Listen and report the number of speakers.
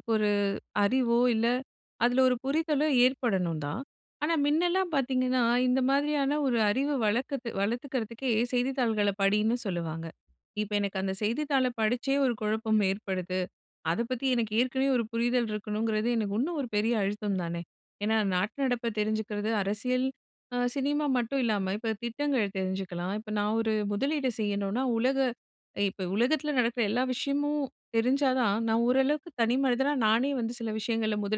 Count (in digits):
1